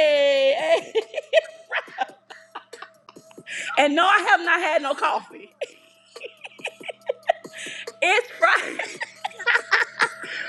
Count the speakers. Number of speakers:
one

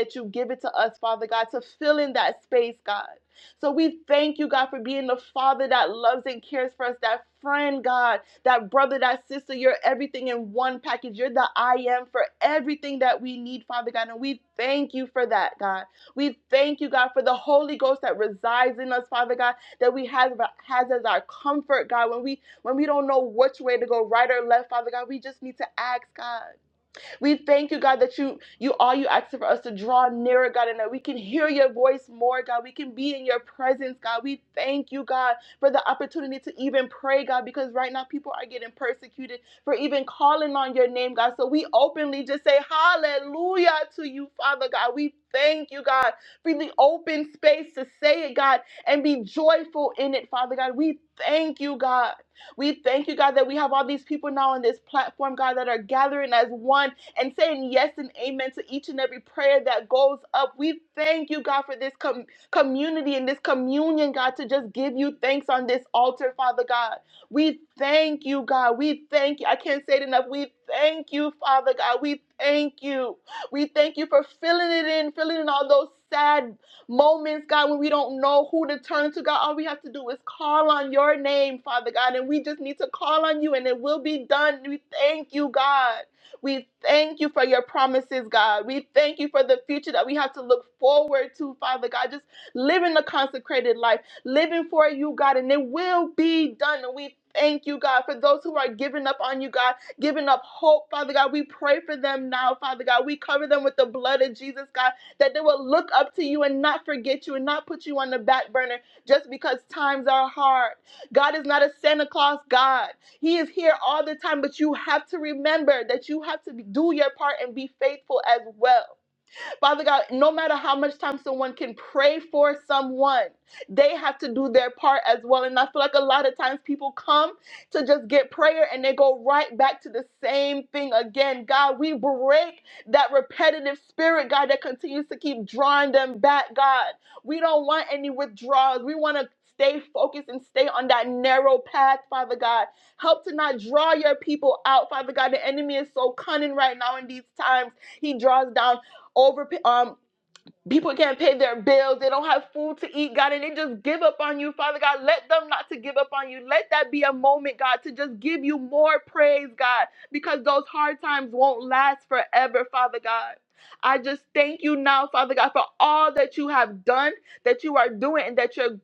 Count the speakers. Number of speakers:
one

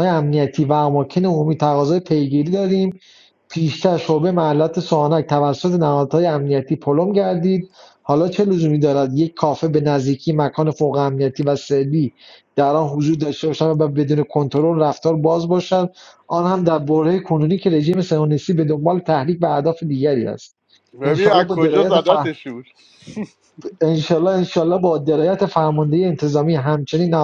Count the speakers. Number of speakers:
two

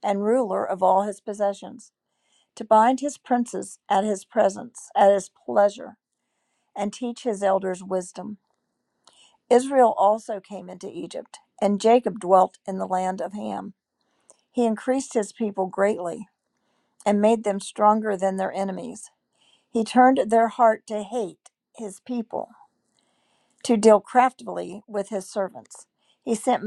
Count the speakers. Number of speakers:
one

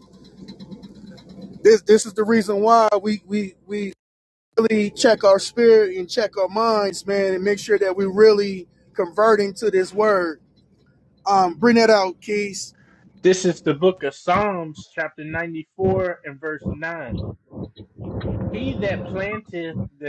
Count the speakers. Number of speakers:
two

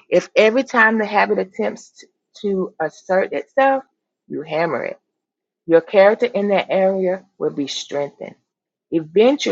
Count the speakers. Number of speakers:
one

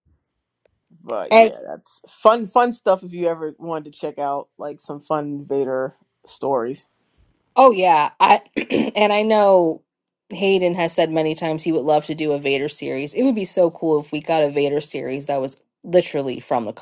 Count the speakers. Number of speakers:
two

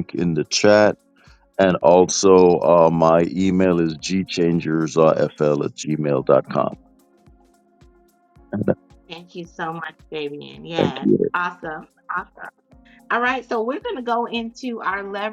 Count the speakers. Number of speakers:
two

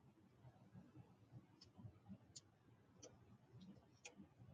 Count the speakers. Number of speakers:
zero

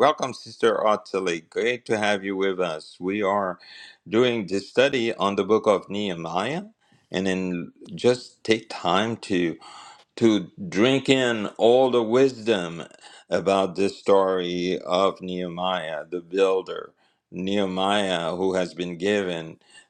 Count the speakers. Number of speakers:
one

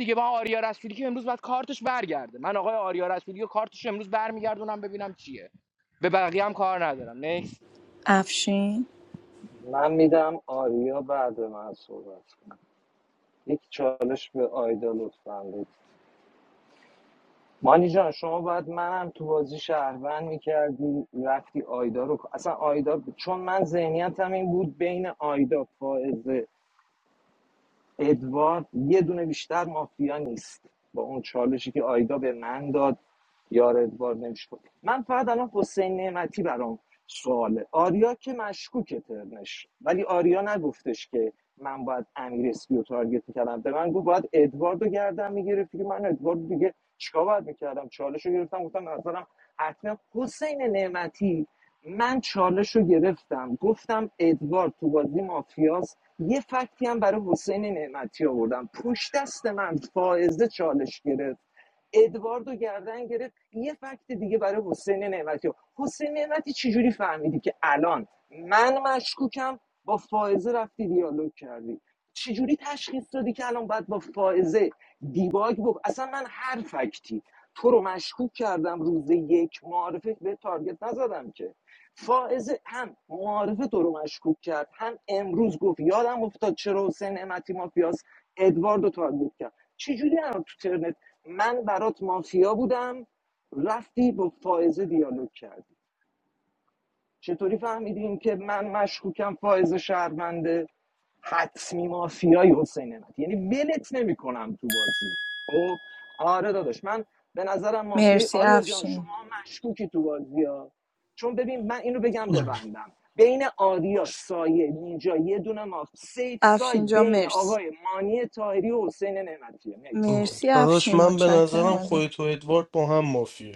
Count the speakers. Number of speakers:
four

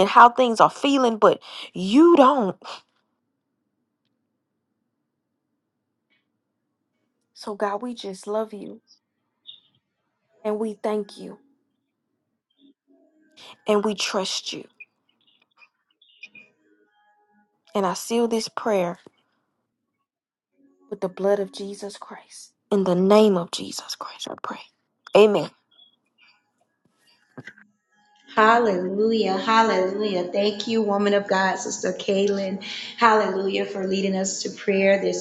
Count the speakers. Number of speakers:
two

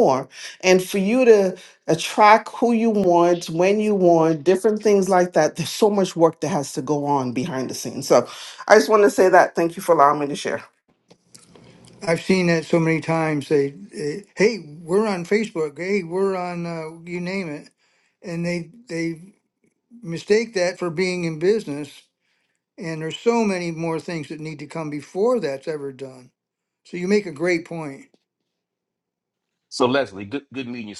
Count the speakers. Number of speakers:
three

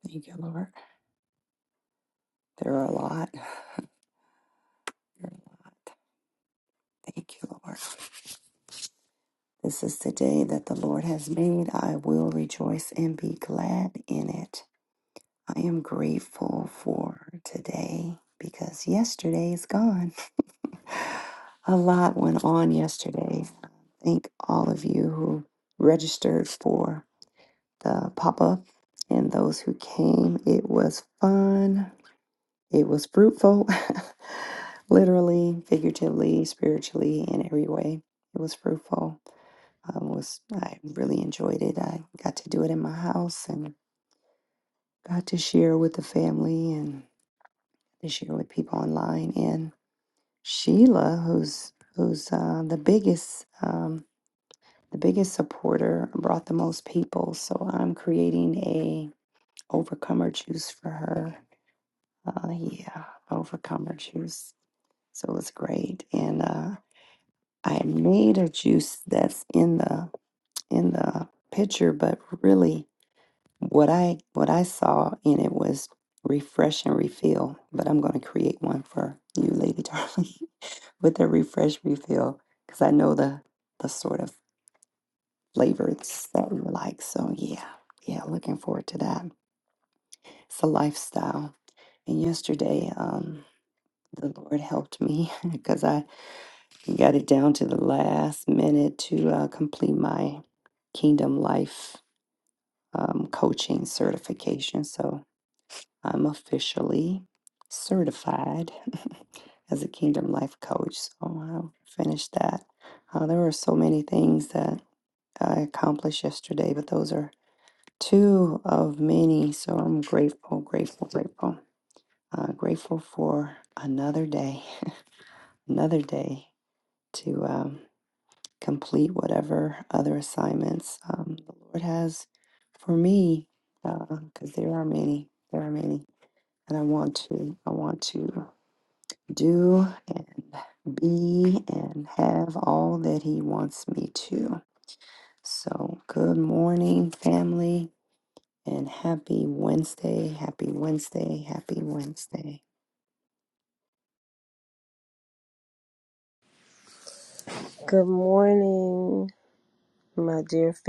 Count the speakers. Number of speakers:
two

